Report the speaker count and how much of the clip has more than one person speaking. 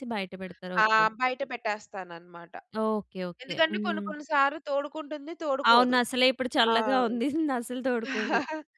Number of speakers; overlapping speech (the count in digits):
2, about 17%